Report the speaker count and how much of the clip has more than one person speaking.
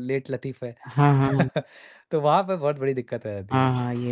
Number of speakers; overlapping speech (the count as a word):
two, about 5%